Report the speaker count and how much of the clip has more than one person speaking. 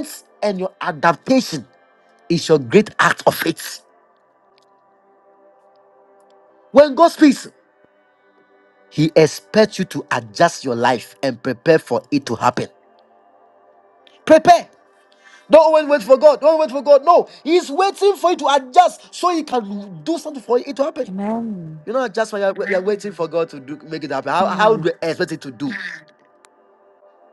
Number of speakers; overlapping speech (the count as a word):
two, about 2%